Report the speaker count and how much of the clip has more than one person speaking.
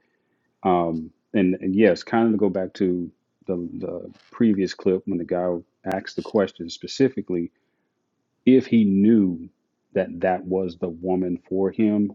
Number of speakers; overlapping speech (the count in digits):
1, no overlap